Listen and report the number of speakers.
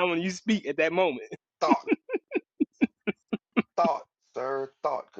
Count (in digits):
2